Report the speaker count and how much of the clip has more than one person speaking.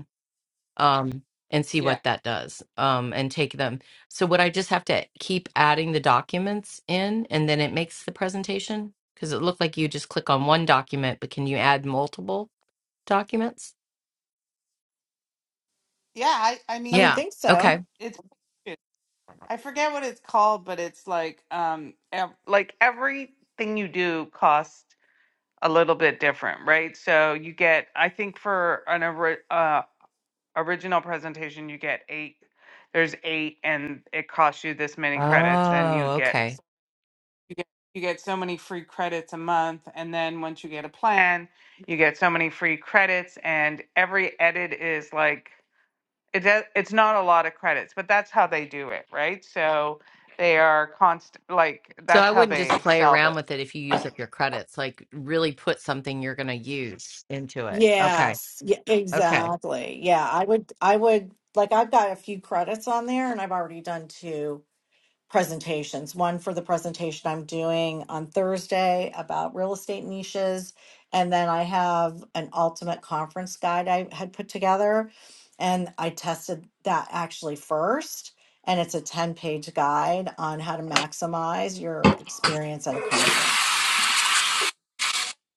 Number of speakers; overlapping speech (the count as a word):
three, about 5%